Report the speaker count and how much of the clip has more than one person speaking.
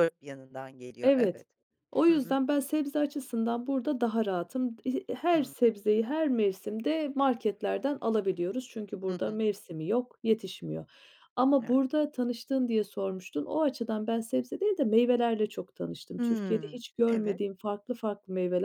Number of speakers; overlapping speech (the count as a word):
two, about 10%